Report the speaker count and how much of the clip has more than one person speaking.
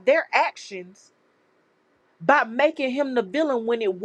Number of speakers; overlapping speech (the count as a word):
one, no overlap